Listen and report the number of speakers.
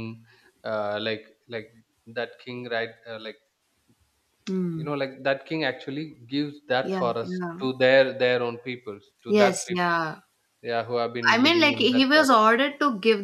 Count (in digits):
2